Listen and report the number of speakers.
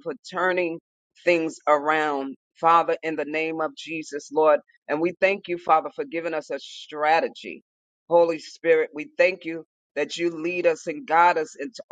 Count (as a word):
one